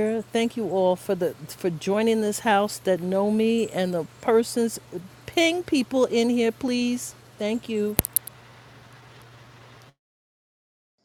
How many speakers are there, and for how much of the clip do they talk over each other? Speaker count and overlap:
1, no overlap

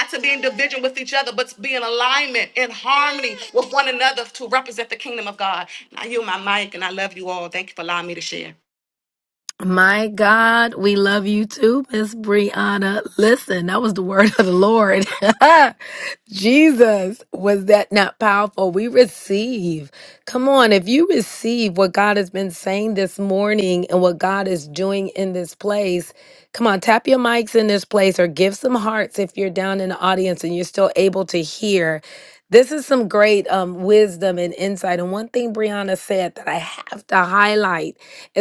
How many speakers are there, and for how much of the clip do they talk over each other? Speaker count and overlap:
2, no overlap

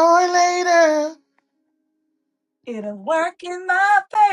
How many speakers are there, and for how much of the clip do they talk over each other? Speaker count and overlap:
2, no overlap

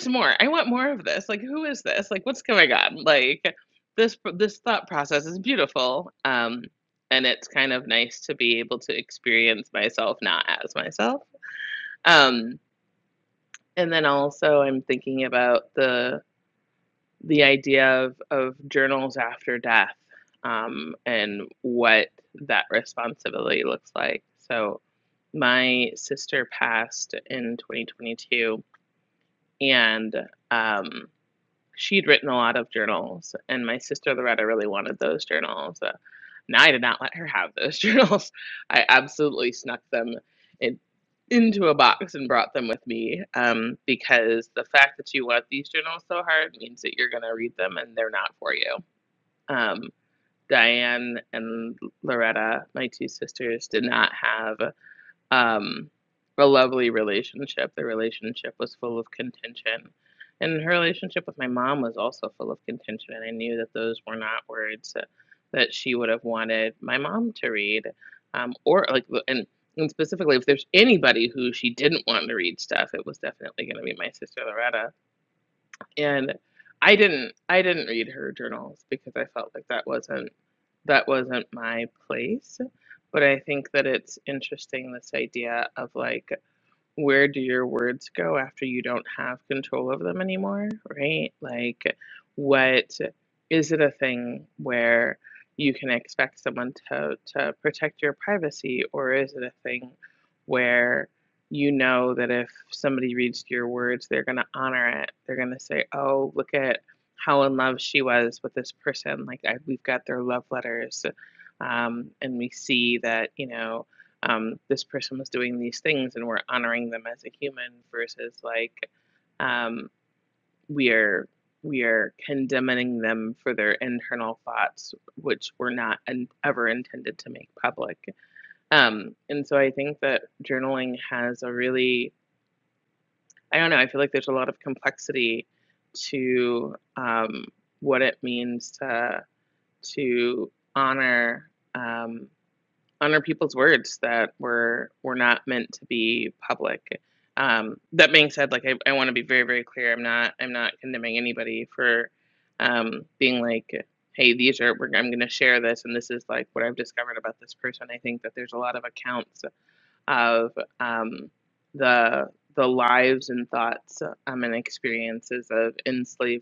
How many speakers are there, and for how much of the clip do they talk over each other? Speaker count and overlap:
1, no overlap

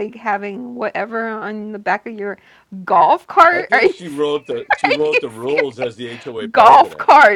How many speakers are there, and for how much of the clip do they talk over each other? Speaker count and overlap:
2, about 28%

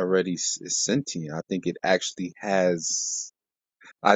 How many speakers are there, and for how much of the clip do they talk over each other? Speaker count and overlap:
1, no overlap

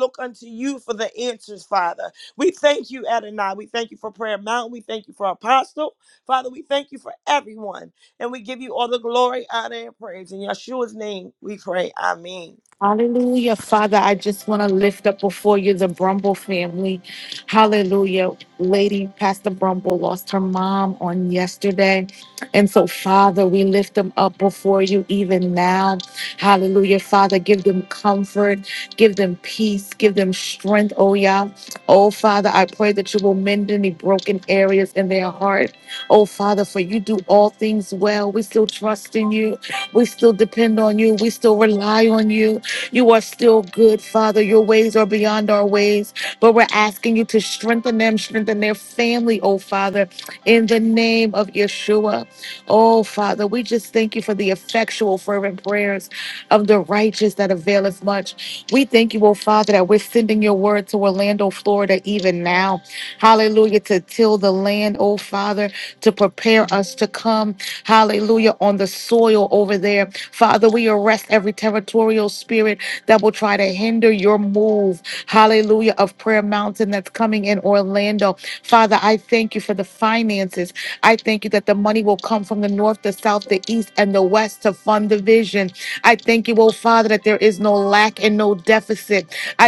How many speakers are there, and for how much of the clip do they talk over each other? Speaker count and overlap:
2, no overlap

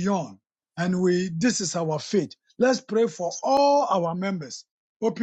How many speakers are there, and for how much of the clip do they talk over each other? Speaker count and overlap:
1, no overlap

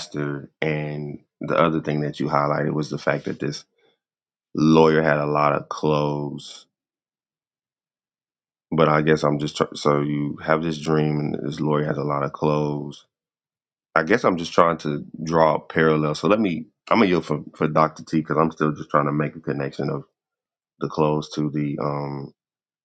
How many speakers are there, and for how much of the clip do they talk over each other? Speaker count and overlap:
1, no overlap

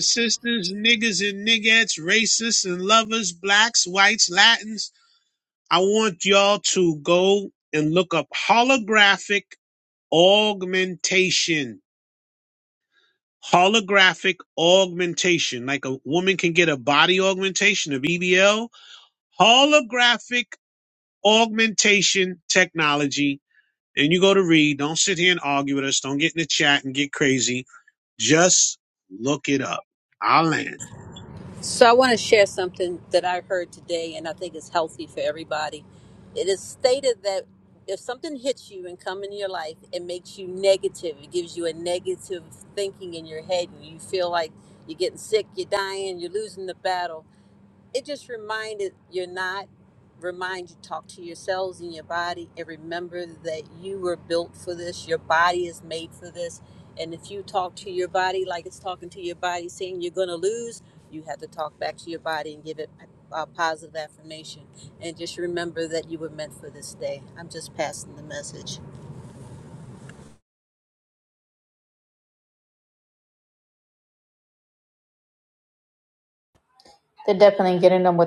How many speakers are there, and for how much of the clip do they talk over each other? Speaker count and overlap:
3, no overlap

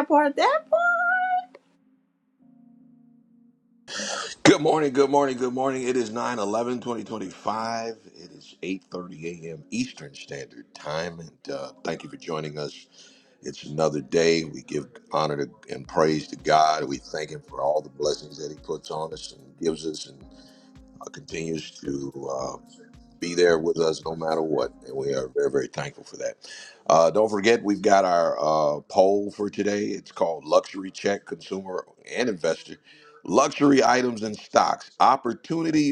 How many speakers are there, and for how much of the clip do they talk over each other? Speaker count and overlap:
2, no overlap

